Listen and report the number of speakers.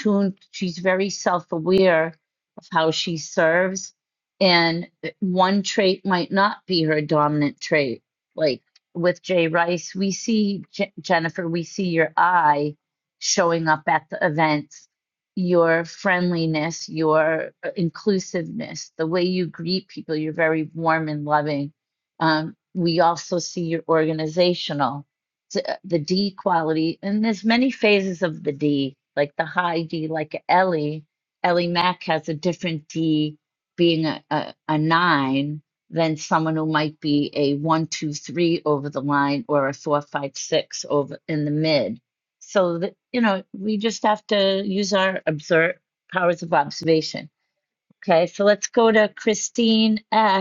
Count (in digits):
1